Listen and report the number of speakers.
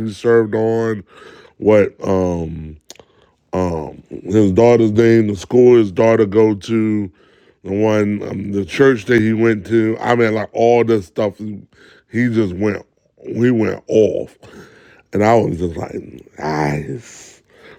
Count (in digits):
1